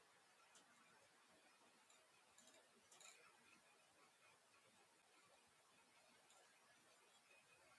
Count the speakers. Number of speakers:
zero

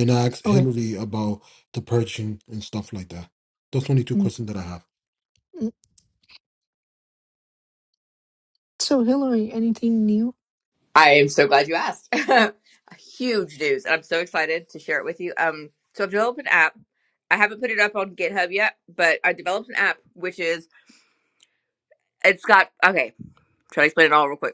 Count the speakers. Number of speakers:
three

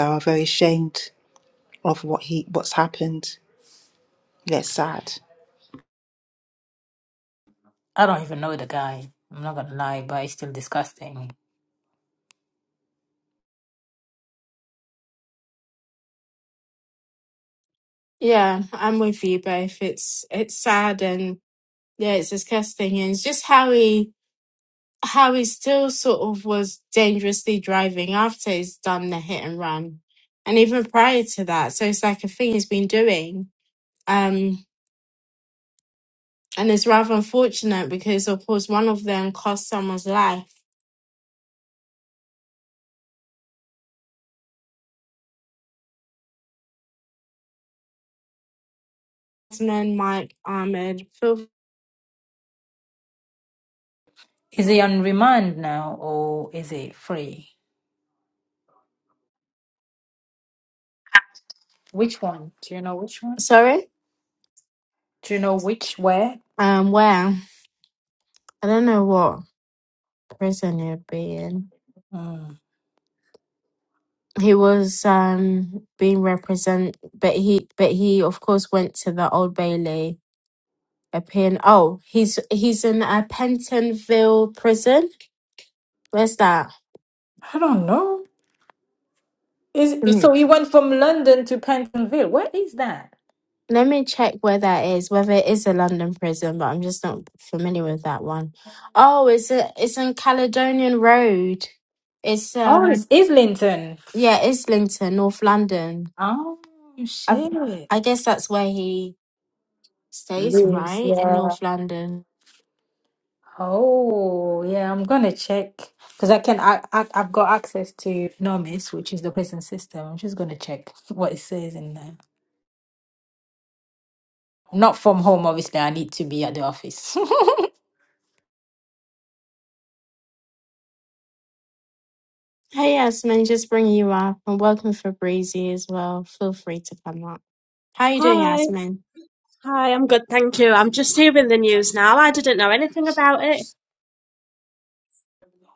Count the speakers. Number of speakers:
four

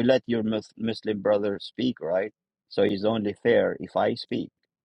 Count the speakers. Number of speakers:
one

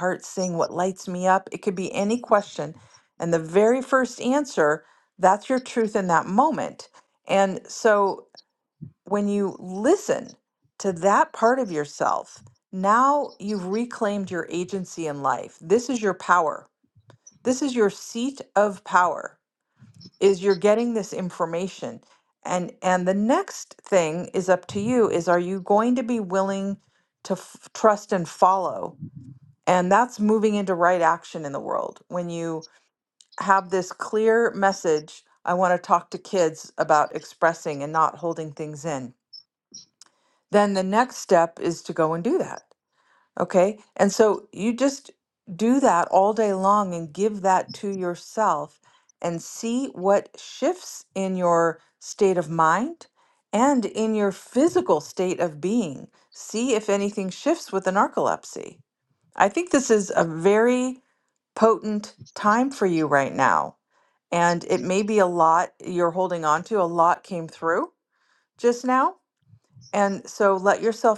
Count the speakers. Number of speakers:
one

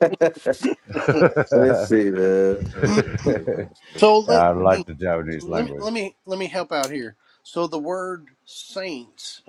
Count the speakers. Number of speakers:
three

